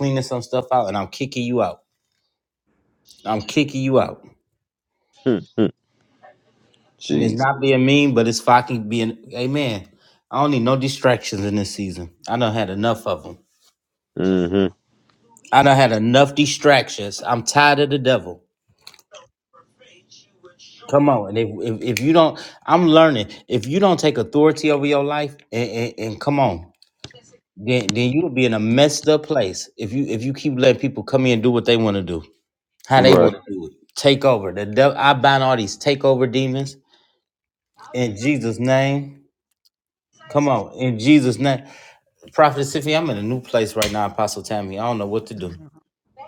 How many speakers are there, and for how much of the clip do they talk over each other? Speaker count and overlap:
2, about 1%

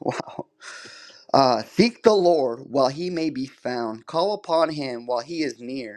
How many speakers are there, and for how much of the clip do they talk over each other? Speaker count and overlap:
1, no overlap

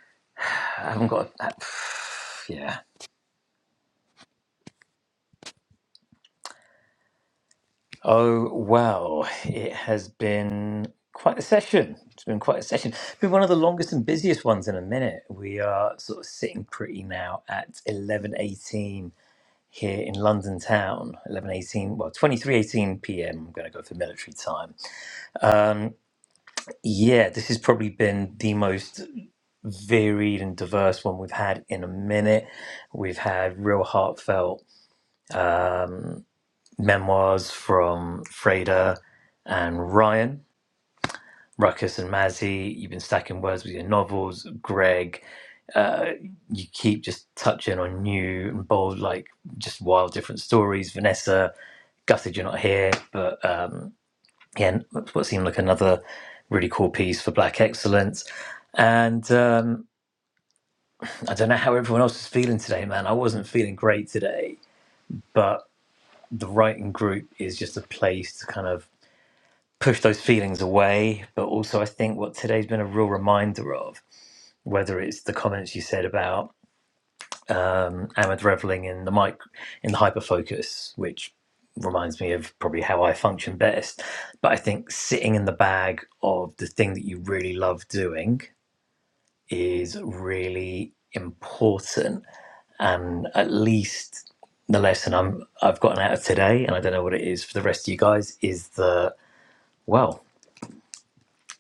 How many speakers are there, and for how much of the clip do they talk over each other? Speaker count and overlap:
1, no overlap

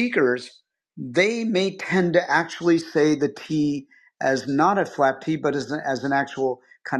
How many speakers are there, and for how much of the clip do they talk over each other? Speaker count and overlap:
1, no overlap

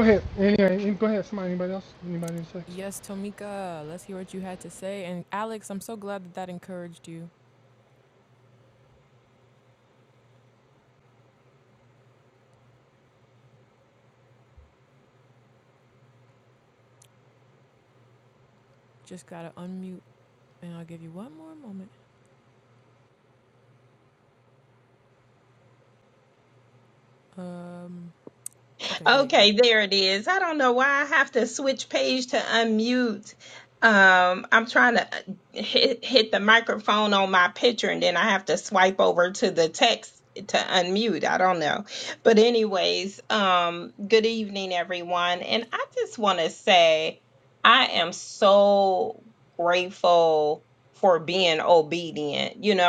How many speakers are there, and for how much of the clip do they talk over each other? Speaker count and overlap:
3, about 1%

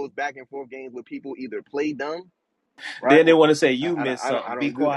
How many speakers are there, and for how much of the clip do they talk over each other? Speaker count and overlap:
2, about 30%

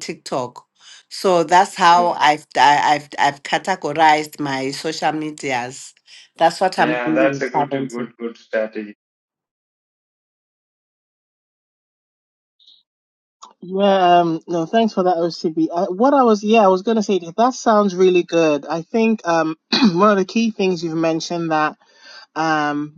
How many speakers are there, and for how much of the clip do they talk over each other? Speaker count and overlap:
3, about 6%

